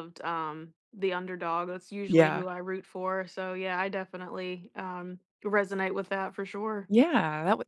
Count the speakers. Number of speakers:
2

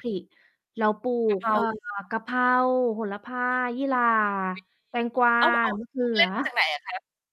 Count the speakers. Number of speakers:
2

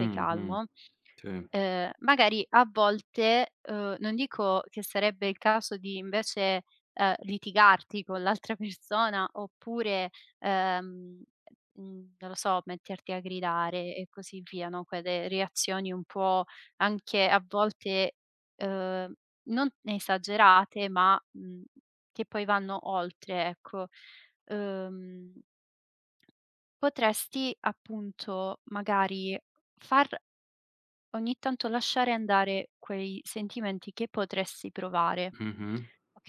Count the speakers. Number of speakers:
2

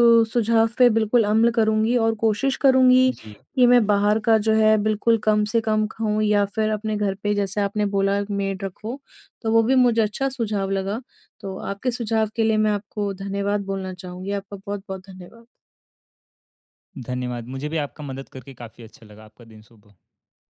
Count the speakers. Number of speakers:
2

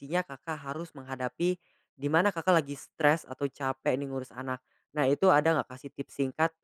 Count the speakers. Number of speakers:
1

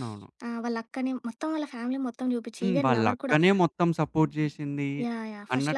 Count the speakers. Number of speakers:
2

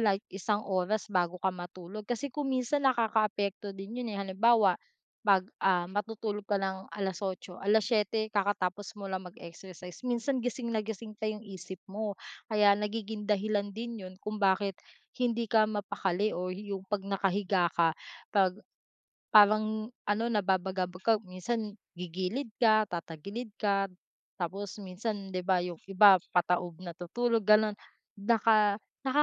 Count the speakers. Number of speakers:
1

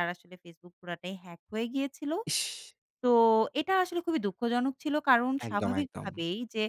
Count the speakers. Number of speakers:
2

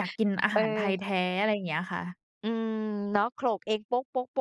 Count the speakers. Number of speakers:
2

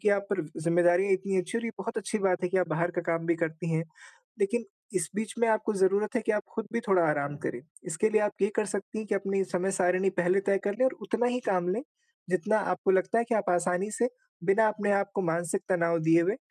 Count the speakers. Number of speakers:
1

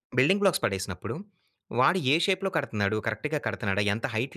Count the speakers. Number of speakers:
1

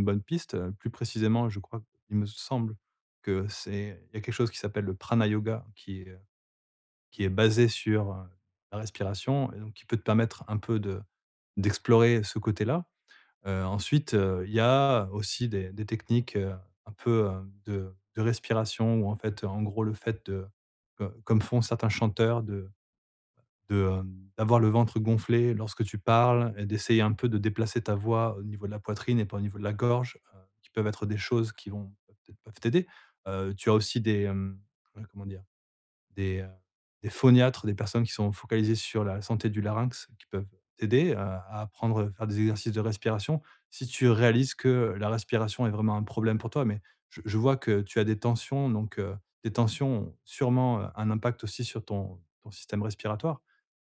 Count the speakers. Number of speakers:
1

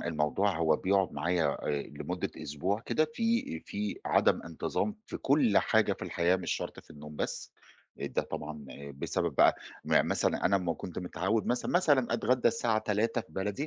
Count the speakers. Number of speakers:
1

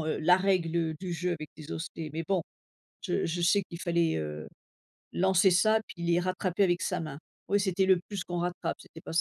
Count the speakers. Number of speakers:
1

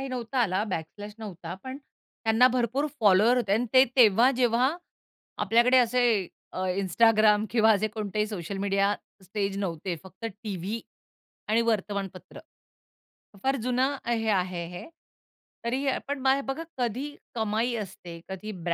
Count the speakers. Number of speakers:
1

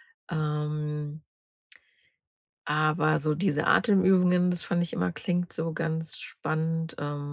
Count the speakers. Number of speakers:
1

